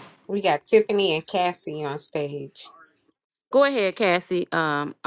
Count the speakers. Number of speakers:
2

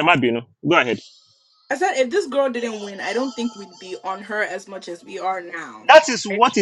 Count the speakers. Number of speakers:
2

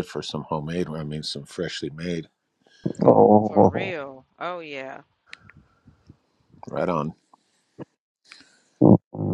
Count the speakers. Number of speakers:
3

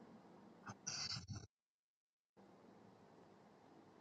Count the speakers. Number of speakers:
0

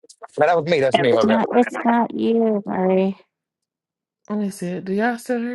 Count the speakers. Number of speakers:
3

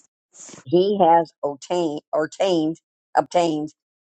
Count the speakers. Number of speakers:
1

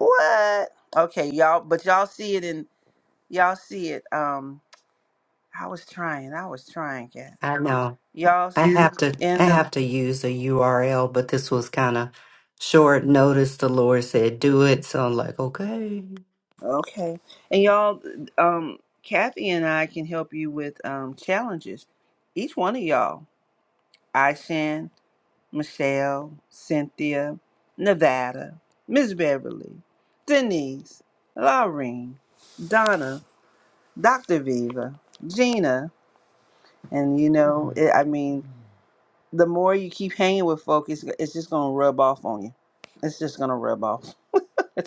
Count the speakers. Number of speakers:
2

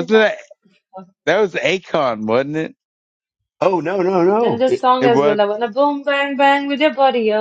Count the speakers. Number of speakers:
3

